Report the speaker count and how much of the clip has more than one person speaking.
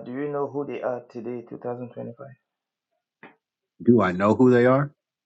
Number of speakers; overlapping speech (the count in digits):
2, no overlap